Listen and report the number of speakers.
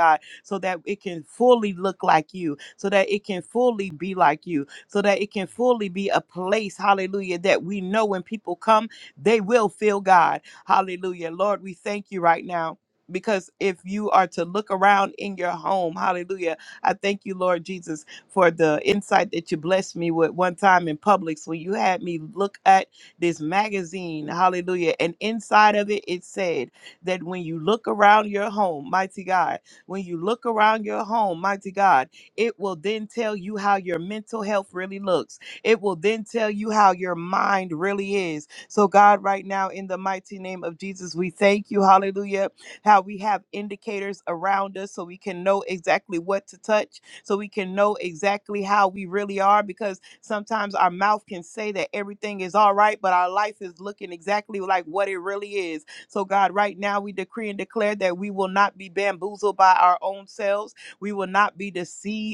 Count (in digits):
1